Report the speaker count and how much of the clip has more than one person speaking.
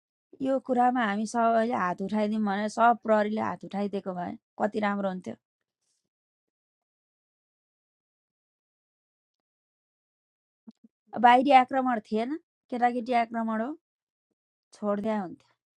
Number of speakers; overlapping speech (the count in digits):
1, no overlap